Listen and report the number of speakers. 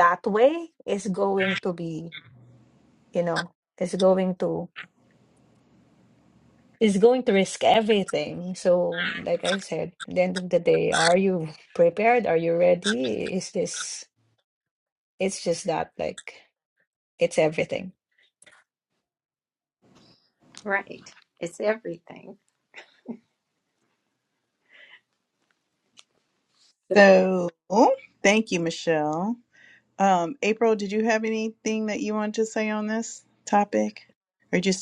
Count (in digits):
3